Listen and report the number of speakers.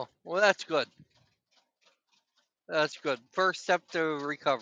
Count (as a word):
one